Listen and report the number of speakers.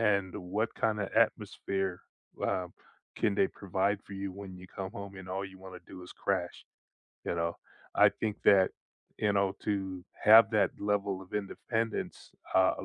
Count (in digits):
1